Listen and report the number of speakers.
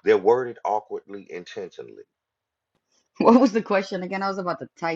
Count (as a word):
two